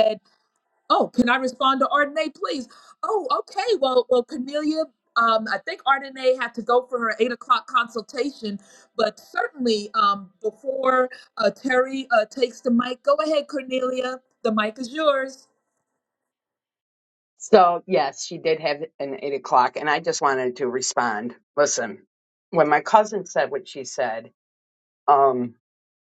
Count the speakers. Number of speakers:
2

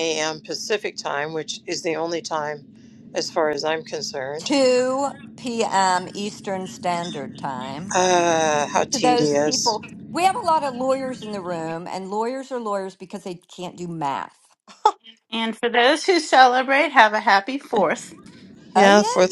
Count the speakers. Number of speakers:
3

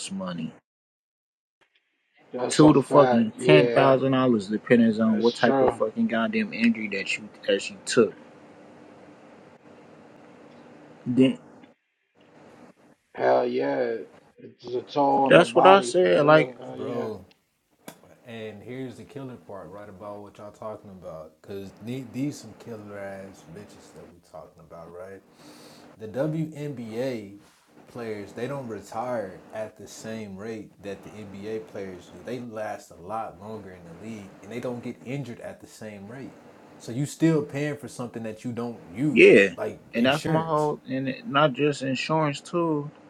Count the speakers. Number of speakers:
3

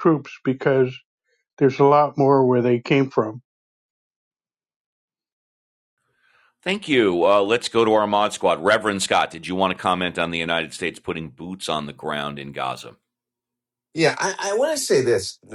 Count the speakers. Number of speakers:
3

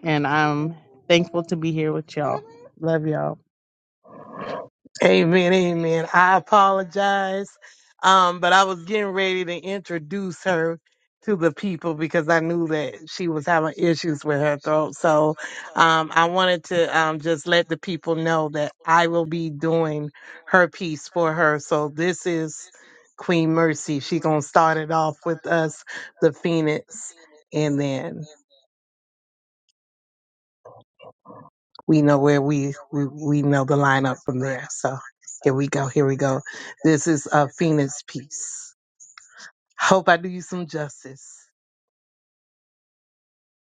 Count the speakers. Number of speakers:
2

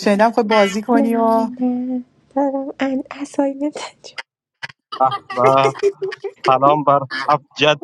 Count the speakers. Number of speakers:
3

